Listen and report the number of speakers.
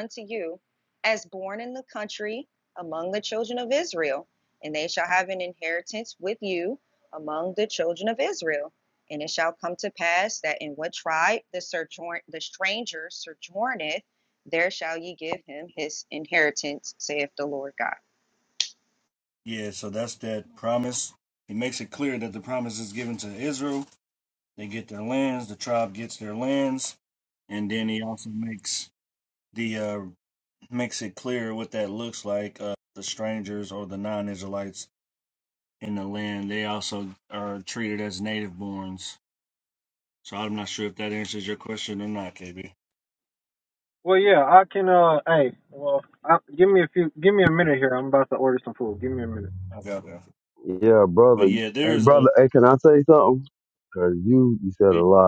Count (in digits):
4